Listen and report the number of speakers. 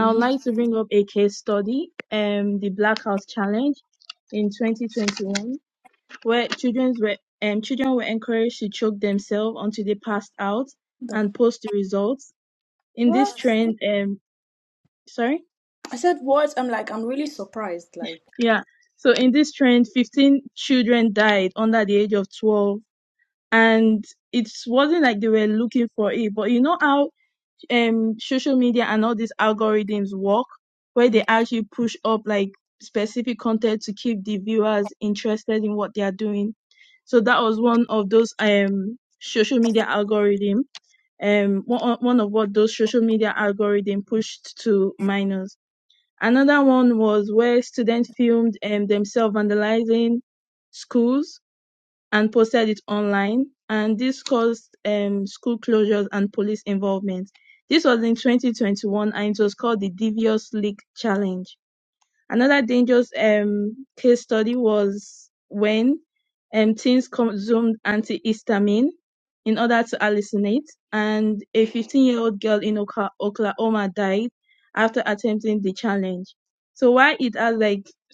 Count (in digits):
2